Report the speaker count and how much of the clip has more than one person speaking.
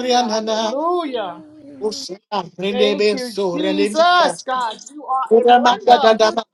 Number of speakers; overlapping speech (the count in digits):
2, about 50%